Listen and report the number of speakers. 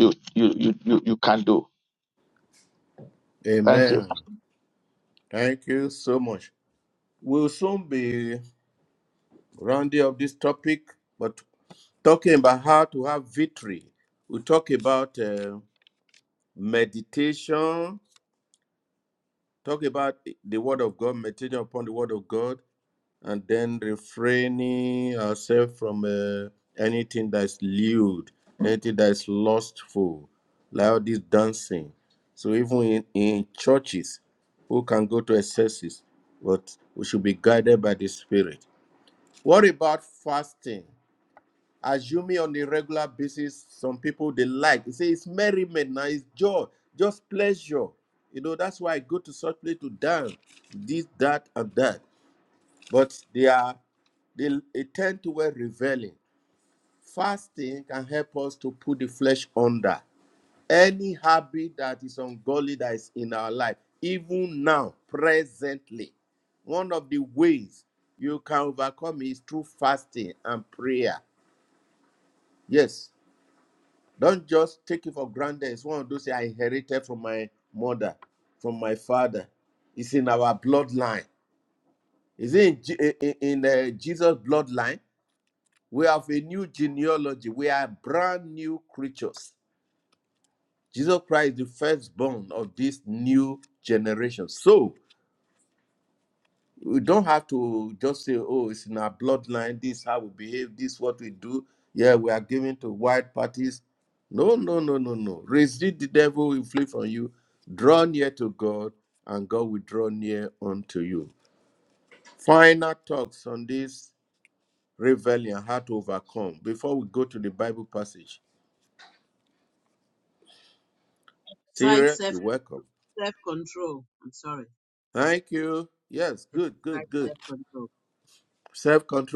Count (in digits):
3